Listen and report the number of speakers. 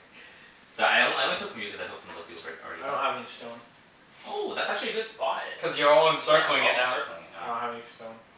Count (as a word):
three